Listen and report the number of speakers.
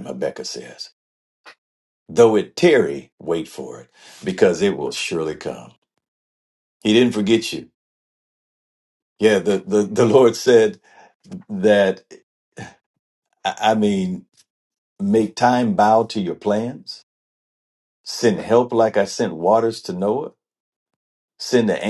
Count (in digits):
1